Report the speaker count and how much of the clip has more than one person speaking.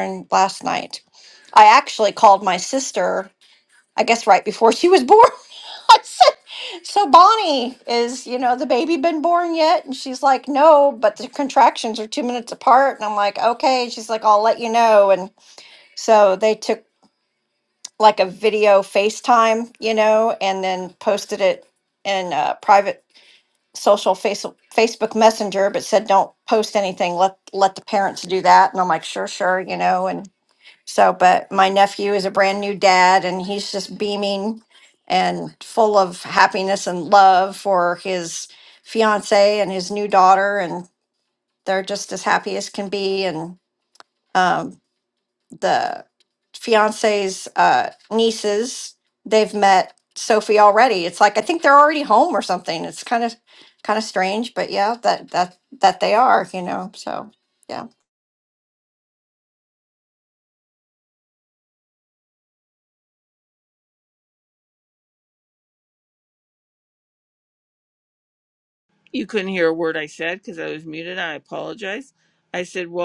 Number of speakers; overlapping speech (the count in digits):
2, no overlap